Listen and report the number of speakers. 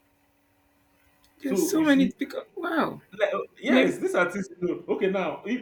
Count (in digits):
2